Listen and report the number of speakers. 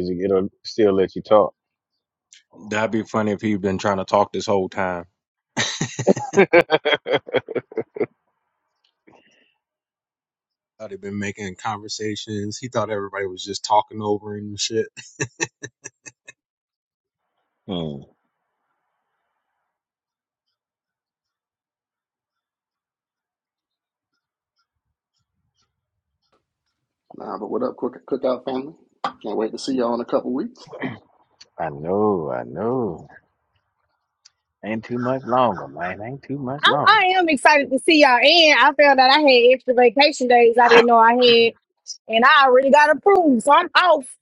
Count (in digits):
4